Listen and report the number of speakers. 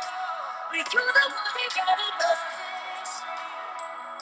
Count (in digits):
0